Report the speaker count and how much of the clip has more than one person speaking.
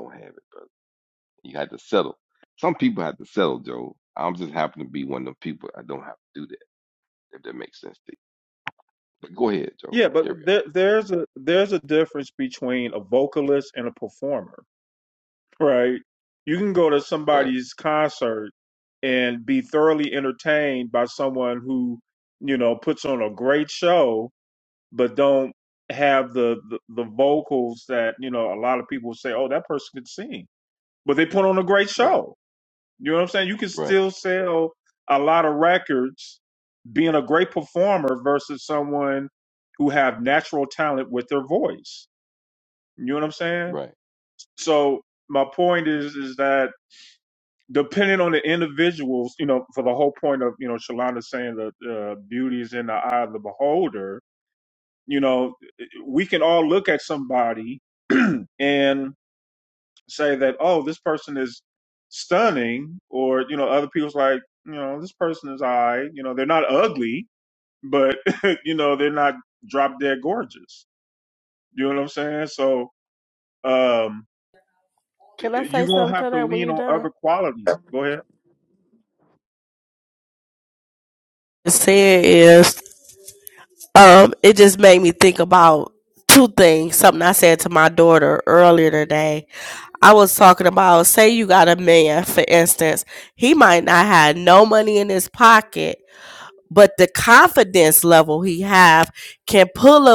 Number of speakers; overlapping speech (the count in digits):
3, about 3%